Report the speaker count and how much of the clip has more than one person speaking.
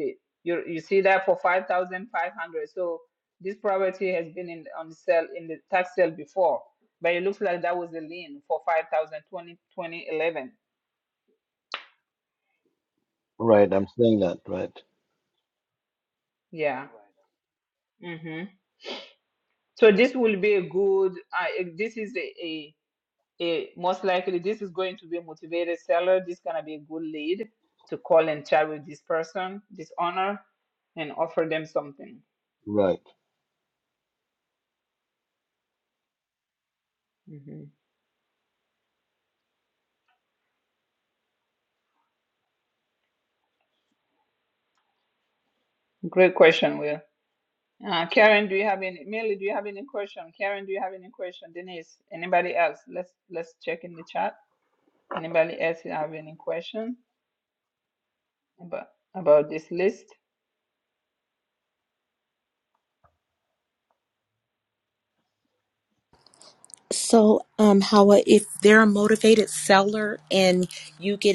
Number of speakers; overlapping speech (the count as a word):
three, no overlap